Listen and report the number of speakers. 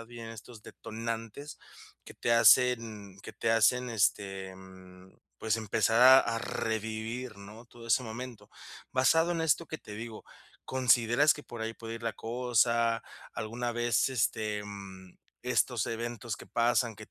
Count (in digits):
1